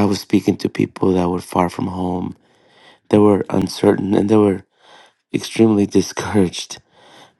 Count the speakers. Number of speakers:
one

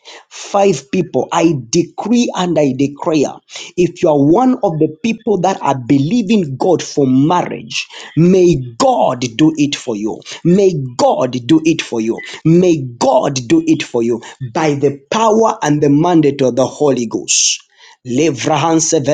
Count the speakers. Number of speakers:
one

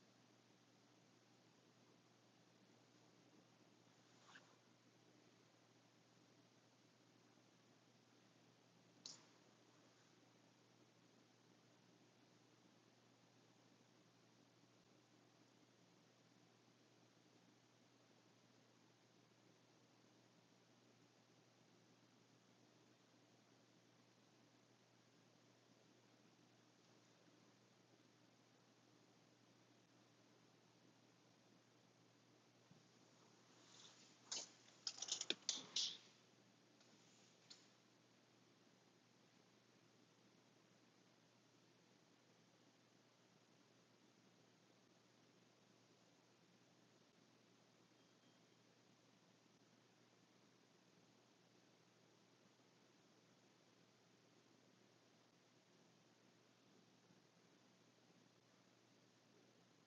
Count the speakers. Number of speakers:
zero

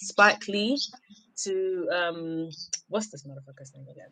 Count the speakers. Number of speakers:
one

